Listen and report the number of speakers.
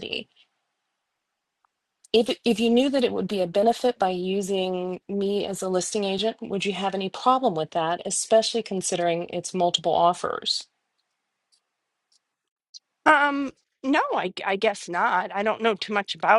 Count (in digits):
2